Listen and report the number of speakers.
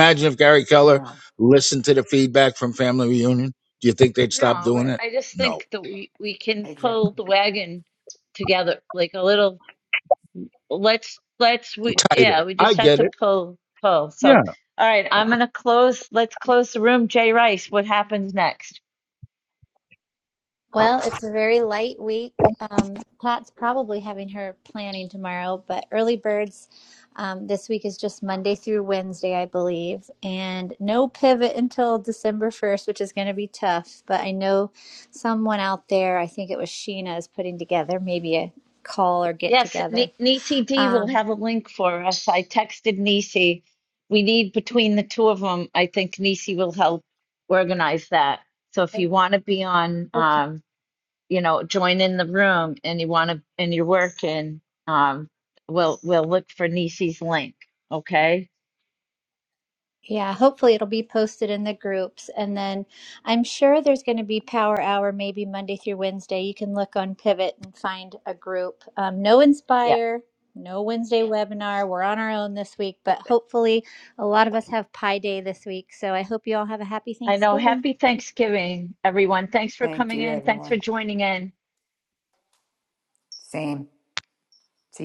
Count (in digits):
4